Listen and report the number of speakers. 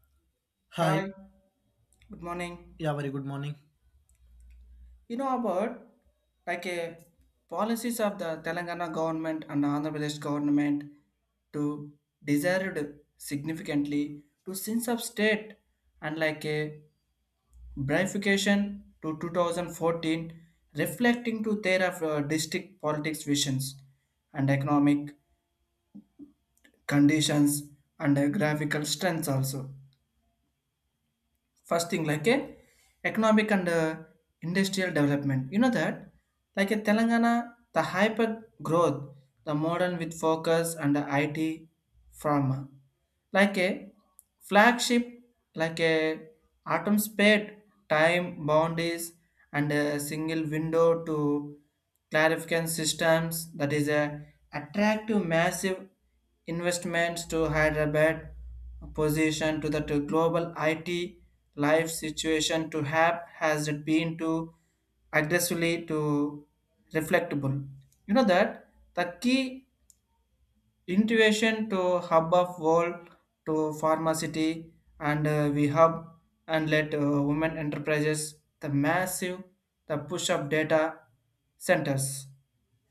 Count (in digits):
2